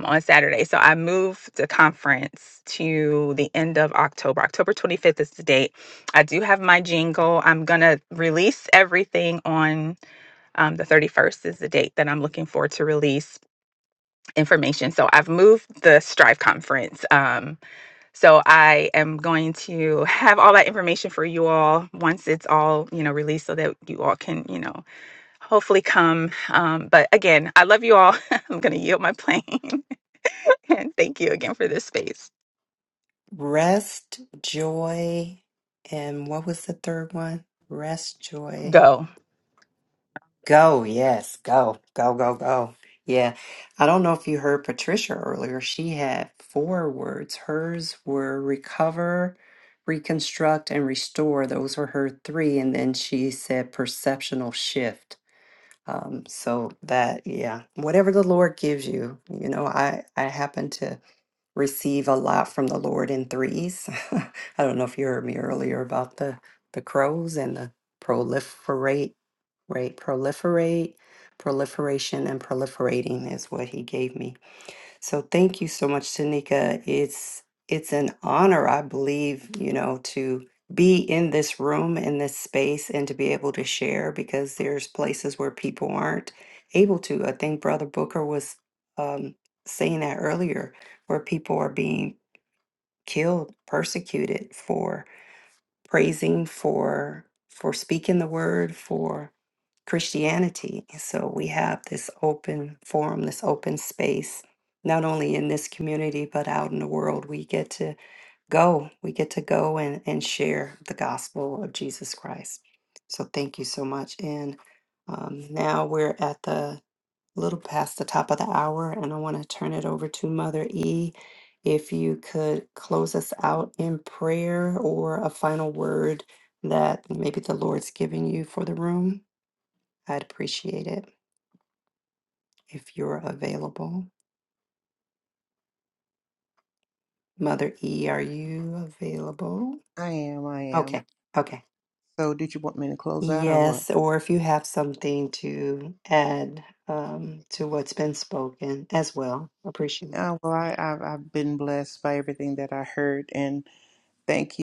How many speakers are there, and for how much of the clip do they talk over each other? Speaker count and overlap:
3, about 1%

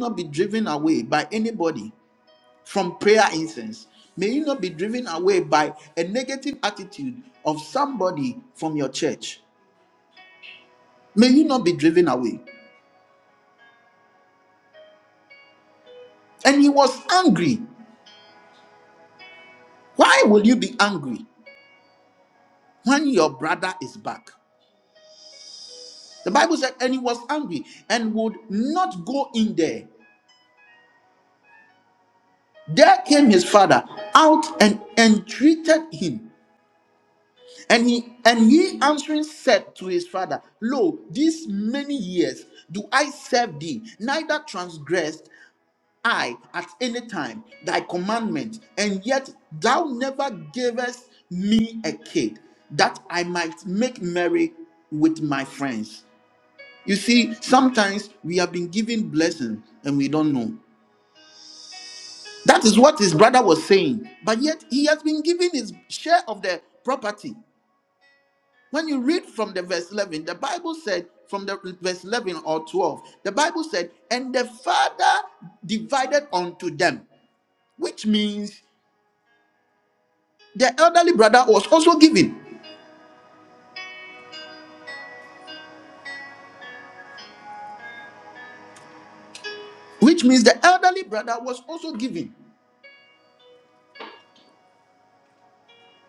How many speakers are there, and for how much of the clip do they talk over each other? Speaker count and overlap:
1, no overlap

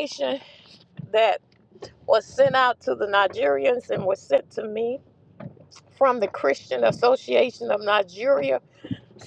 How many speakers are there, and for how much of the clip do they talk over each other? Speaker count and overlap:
1, no overlap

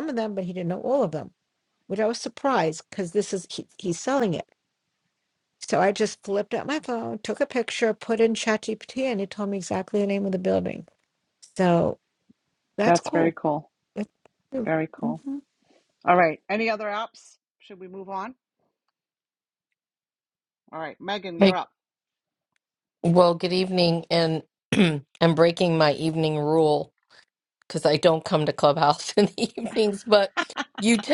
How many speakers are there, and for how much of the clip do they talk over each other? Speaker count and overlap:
3, about 2%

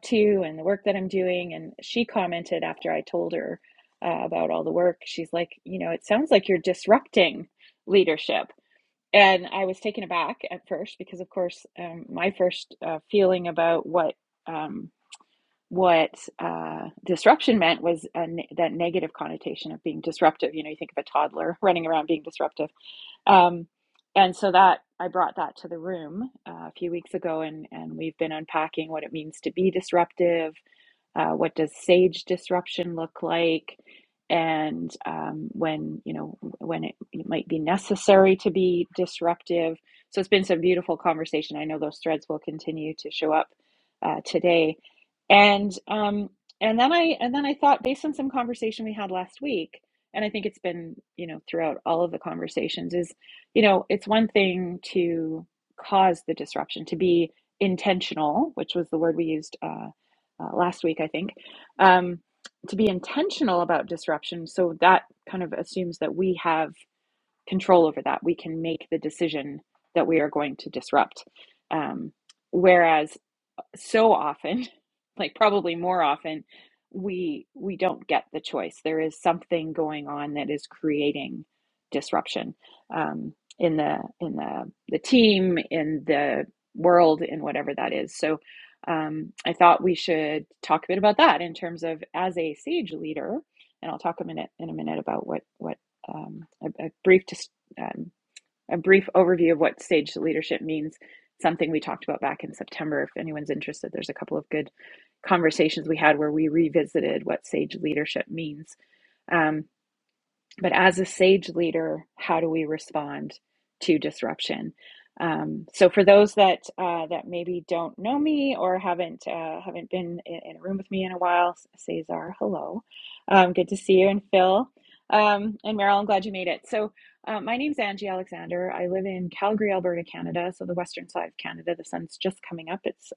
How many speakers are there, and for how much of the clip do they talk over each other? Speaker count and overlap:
1, no overlap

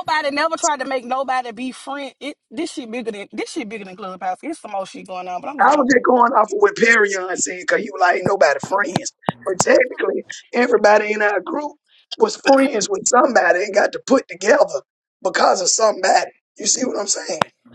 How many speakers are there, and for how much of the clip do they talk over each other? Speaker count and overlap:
2, about 2%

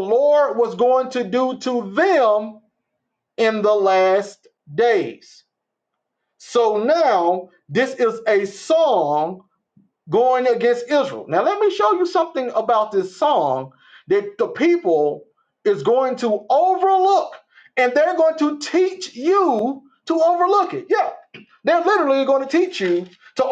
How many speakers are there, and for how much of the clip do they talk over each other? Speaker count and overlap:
1, no overlap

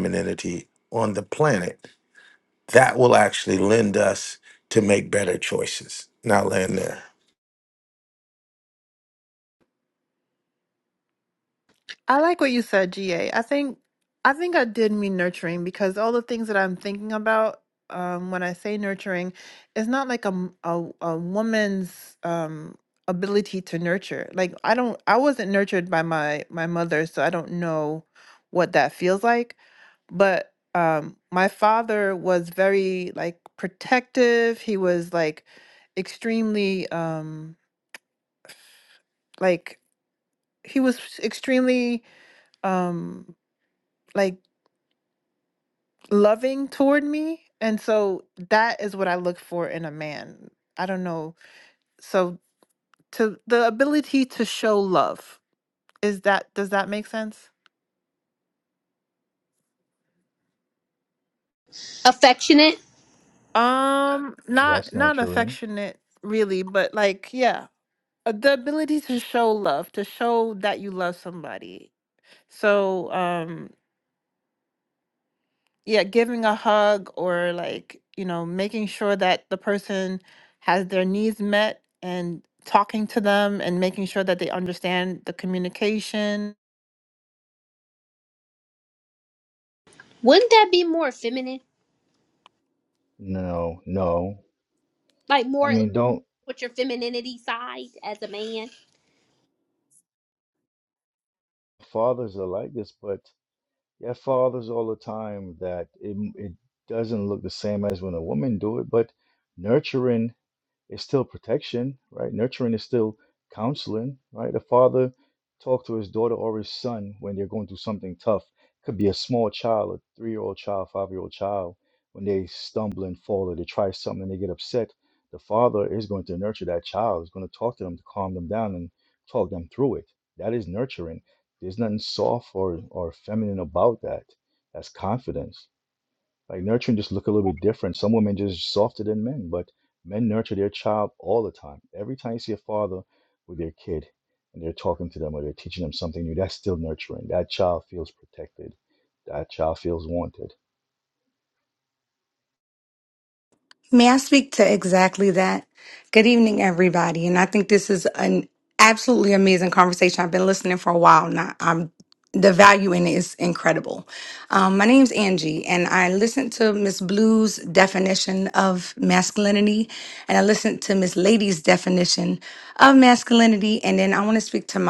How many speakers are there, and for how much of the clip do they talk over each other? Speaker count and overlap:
5, about 1%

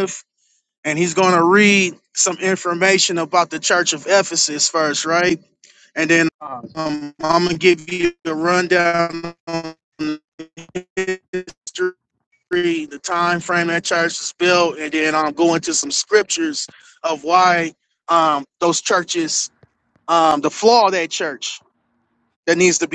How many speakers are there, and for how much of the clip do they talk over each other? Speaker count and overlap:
1, no overlap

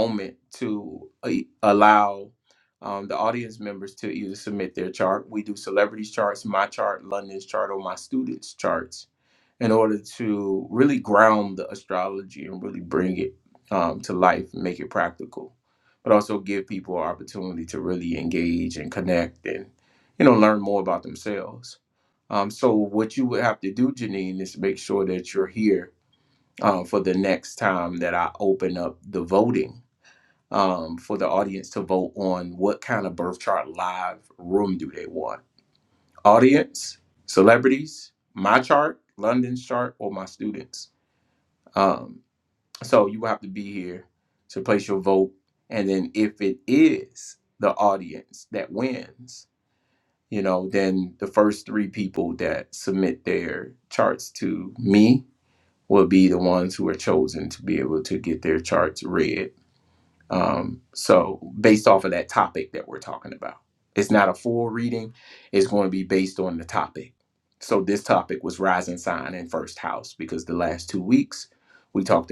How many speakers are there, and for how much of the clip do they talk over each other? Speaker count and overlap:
1, no overlap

